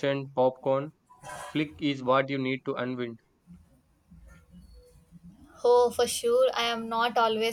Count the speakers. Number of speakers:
two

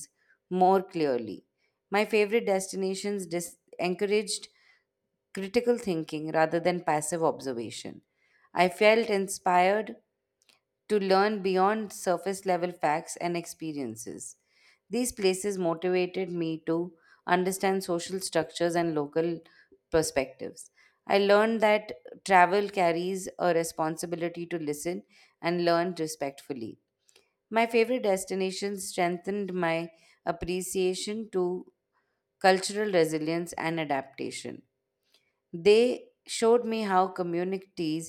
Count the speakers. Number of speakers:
one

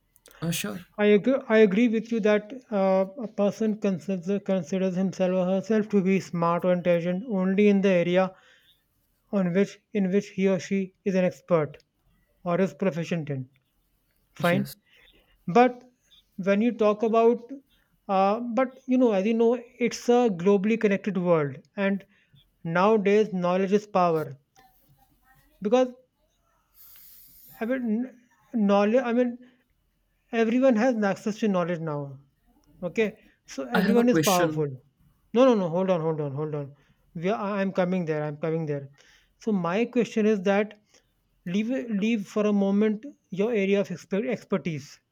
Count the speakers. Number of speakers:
two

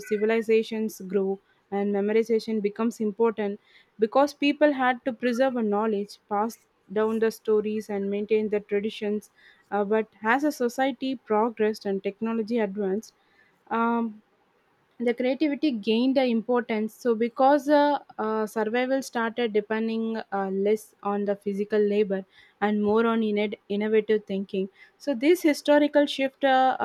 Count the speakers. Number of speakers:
one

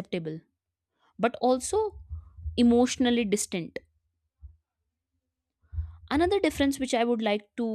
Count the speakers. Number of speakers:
one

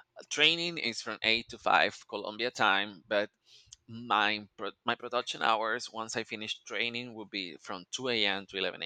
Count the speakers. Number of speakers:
one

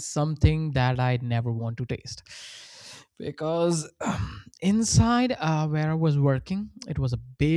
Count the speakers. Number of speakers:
one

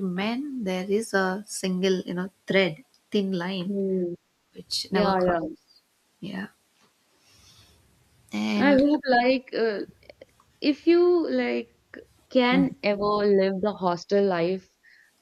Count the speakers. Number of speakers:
two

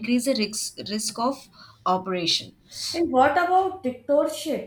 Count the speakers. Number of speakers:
two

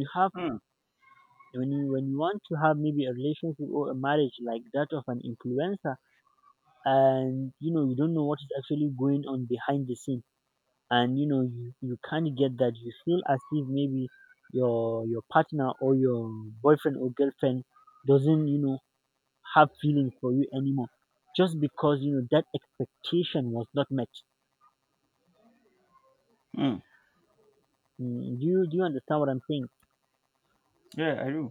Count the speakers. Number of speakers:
two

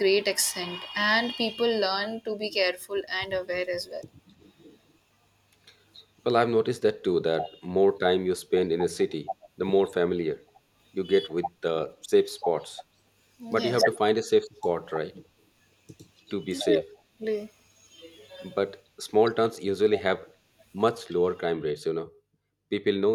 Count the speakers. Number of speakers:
two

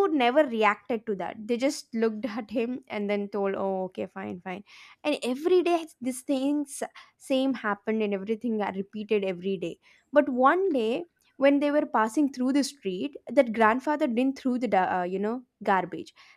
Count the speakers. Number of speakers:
one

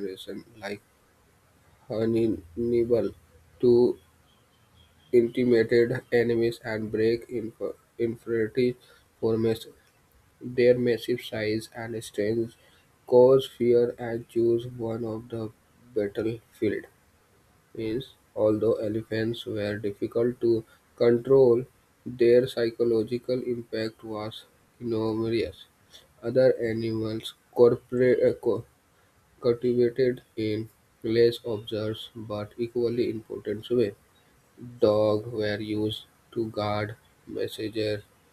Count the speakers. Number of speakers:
one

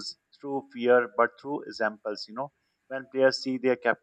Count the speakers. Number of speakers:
one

